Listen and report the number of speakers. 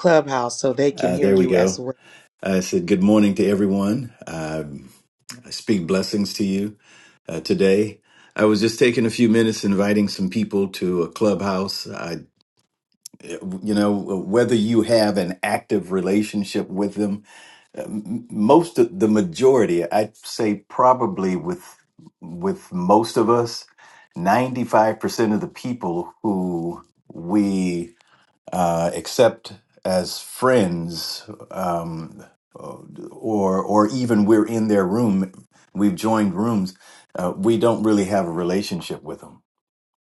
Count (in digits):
2